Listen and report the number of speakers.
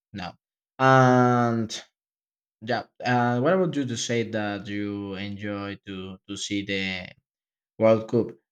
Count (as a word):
one